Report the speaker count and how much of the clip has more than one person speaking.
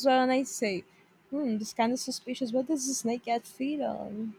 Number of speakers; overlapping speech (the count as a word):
one, no overlap